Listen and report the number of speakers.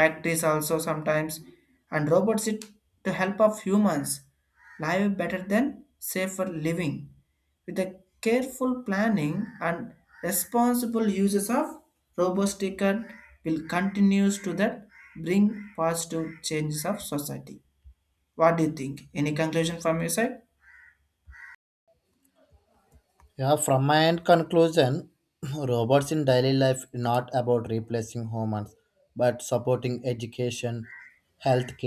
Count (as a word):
two